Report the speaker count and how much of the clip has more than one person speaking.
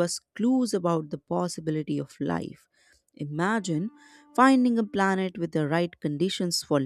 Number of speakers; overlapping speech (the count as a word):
one, no overlap